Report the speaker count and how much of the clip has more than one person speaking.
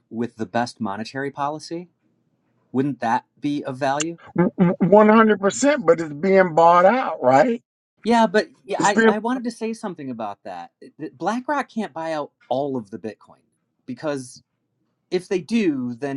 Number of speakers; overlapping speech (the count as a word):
two, about 2%